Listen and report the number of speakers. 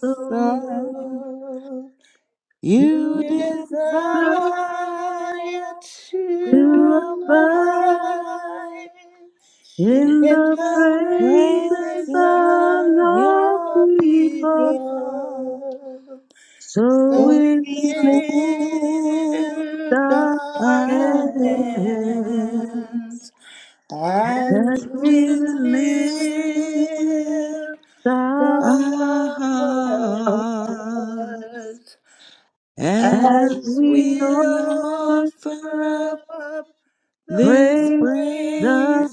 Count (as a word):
three